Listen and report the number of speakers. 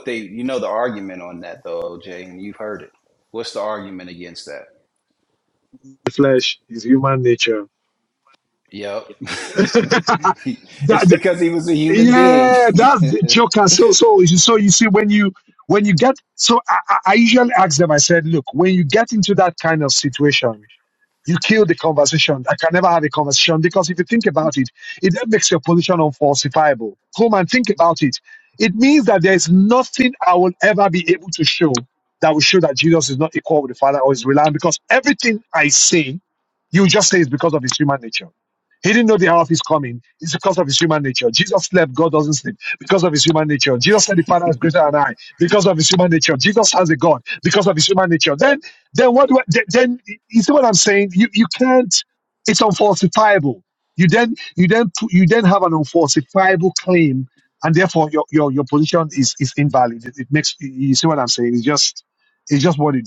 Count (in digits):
2